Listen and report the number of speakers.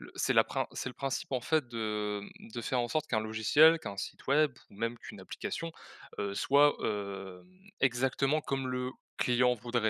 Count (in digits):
1